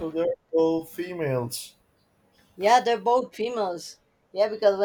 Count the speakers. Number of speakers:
2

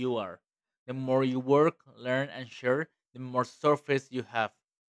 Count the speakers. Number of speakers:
1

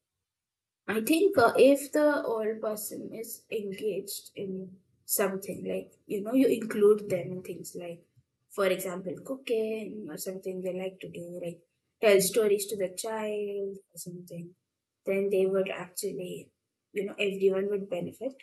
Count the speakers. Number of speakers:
1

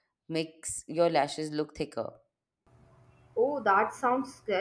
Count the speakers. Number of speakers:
2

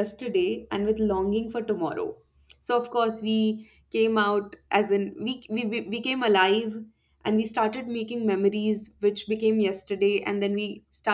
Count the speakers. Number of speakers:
1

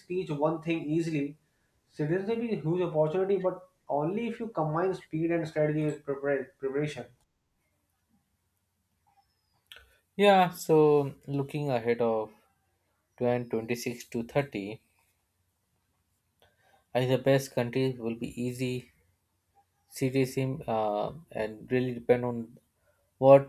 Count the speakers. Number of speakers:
2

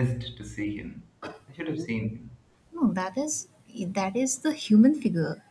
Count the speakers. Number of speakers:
2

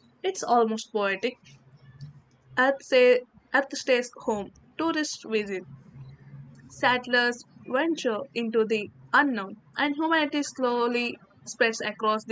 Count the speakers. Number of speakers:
1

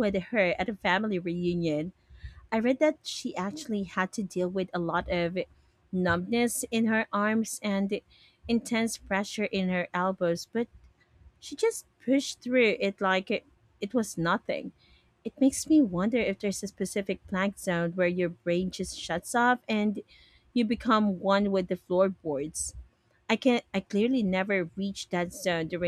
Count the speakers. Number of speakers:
1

